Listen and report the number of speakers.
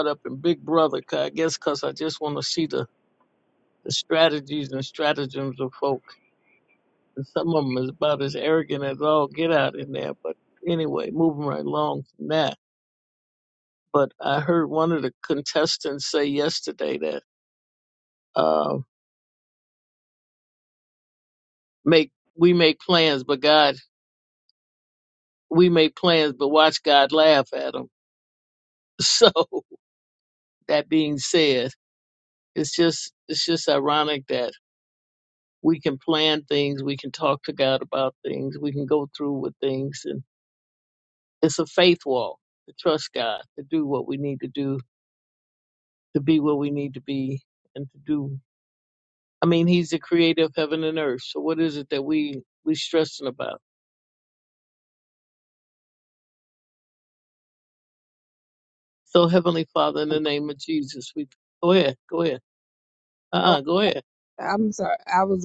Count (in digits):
2